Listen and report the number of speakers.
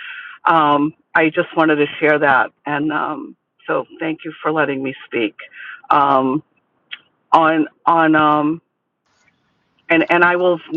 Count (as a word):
one